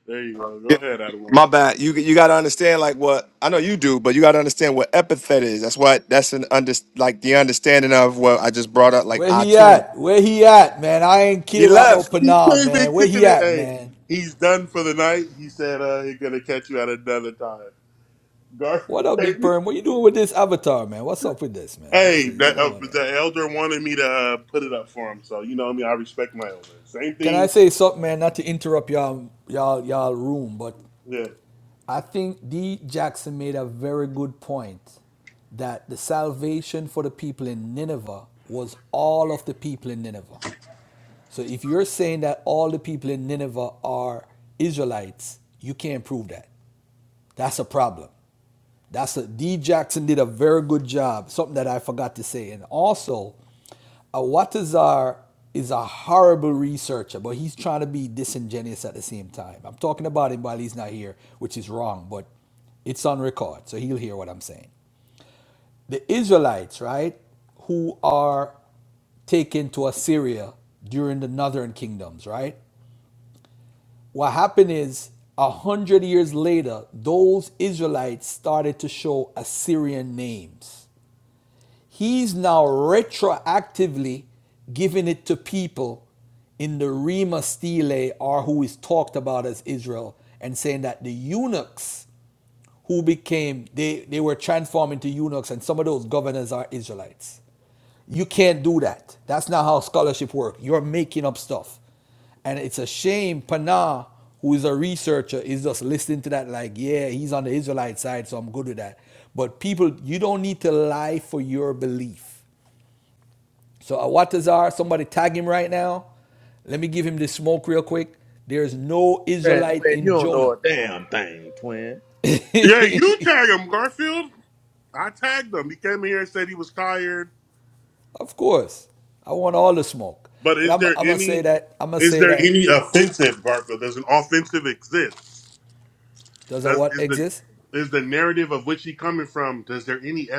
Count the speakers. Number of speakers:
4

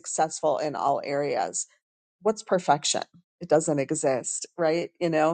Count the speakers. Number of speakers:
1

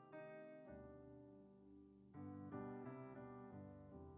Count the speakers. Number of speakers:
0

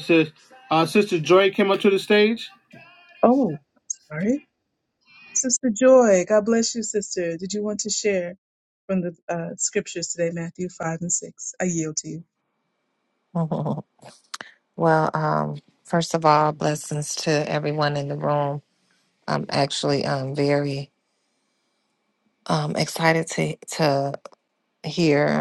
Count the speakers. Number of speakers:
3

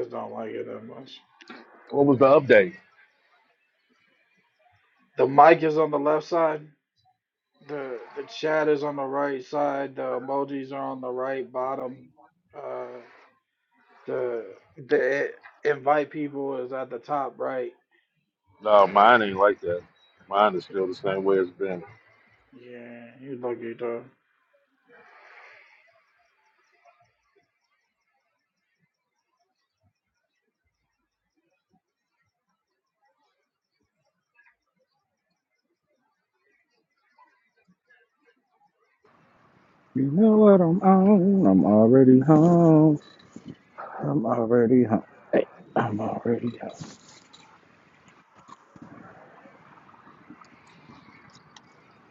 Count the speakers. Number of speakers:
3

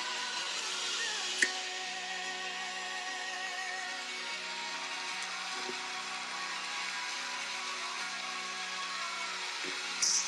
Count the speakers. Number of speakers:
0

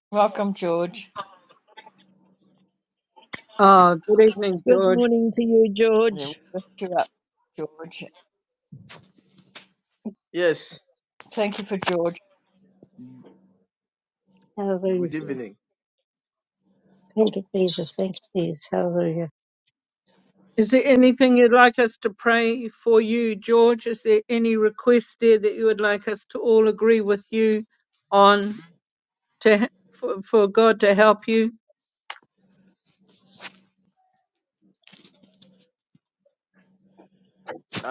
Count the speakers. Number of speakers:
5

